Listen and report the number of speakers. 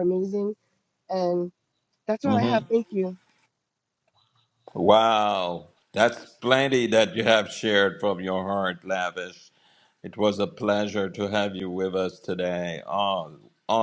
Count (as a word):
two